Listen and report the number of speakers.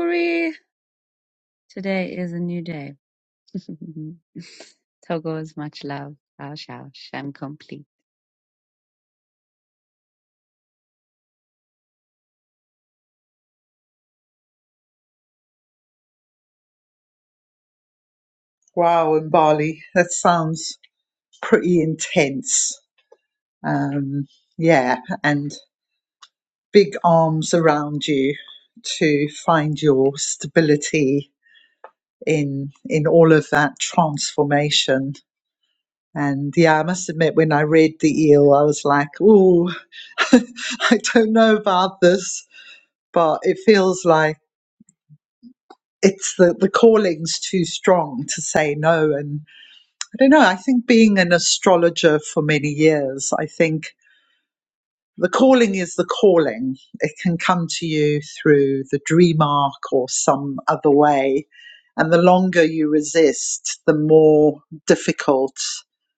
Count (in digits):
2